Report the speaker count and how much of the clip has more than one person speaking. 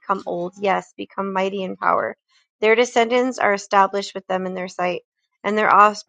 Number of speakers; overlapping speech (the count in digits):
1, no overlap